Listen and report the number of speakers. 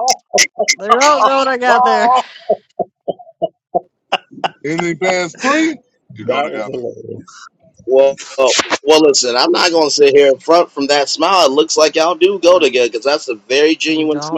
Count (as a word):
four